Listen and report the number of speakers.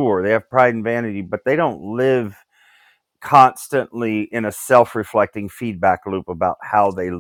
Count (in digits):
1